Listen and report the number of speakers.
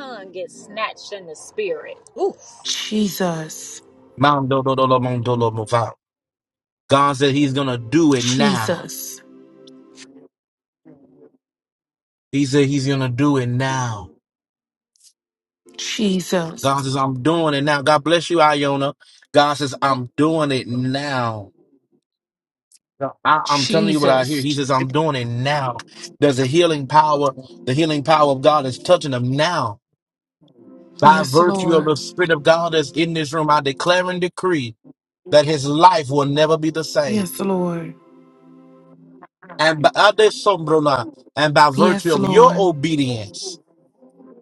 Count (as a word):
three